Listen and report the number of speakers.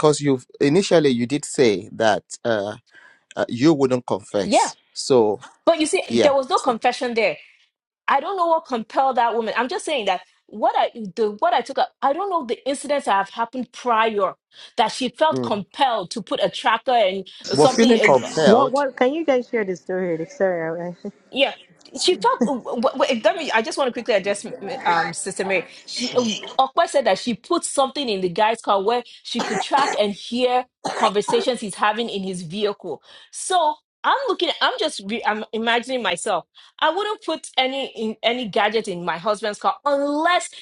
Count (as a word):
three